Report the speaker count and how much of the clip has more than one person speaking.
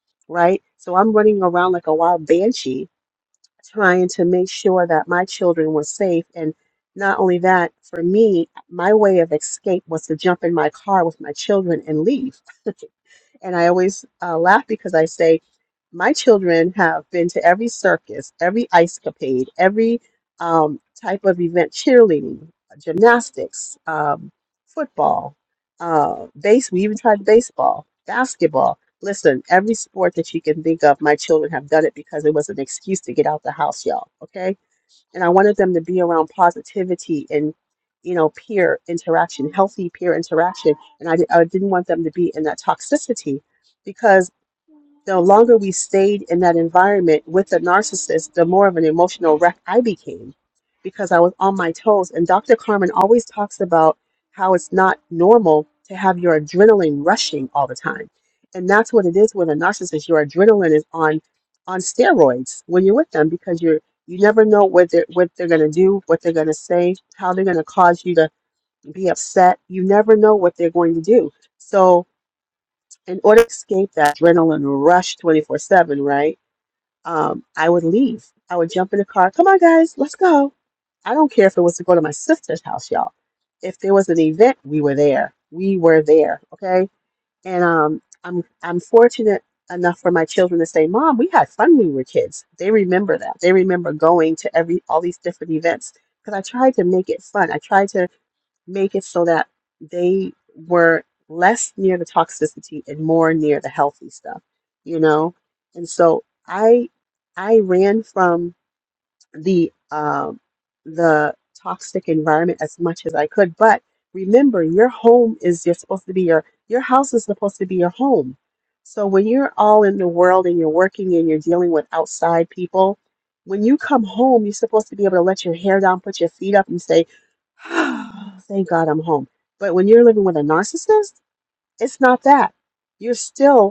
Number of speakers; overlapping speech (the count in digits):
1, no overlap